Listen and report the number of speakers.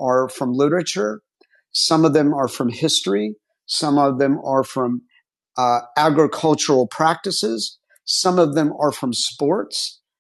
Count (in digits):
1